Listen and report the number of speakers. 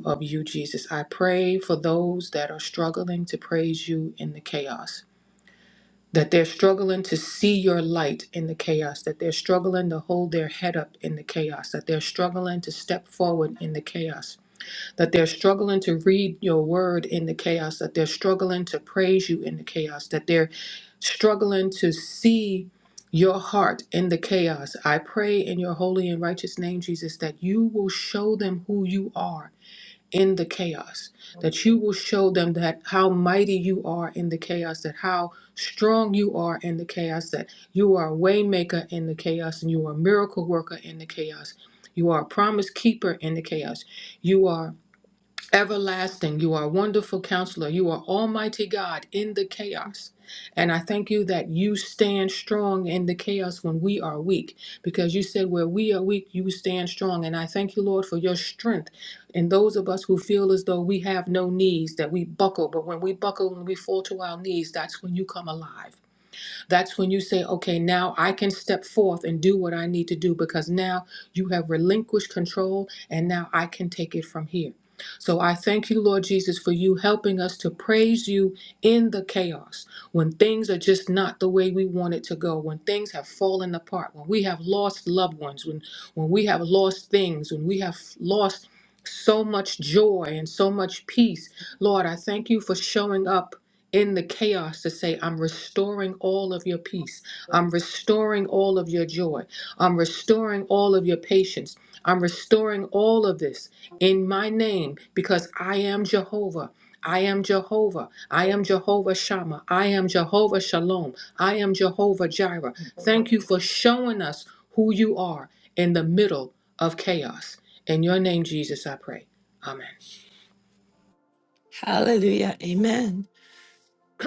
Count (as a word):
two